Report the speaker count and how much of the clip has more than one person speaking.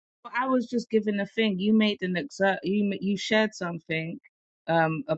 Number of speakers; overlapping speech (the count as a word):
one, no overlap